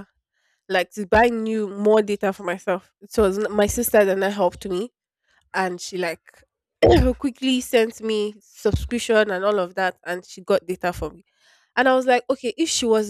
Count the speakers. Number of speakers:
1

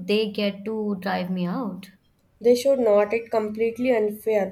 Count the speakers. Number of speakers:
2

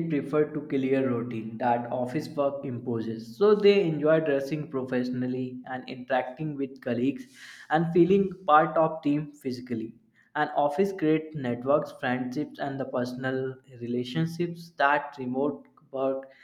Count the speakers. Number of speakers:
1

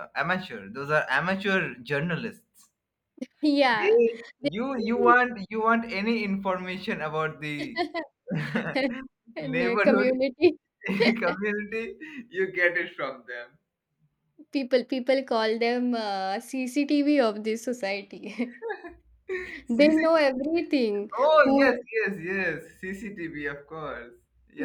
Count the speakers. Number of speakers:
2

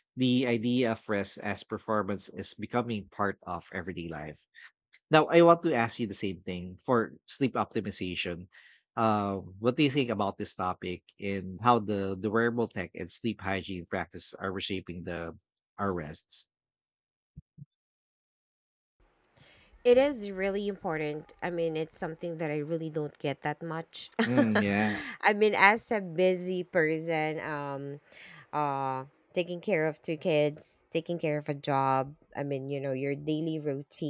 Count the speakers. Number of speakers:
2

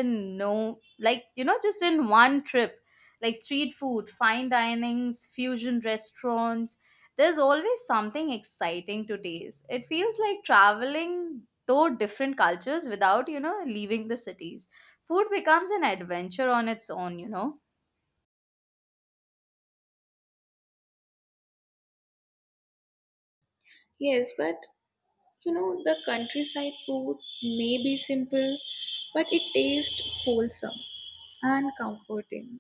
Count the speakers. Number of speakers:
2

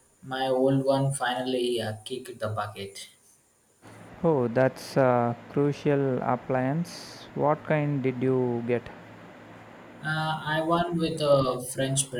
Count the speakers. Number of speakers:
2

